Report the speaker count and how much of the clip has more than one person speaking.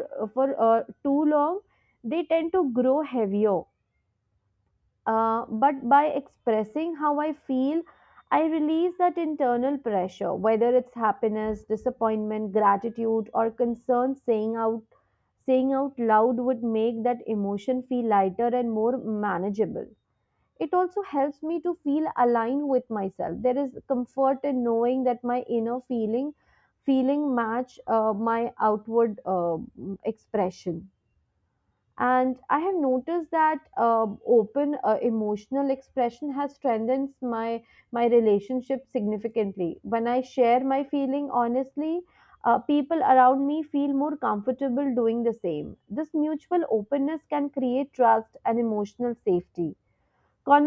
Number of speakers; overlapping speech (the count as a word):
one, no overlap